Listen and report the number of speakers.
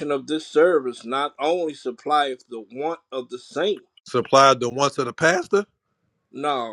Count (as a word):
two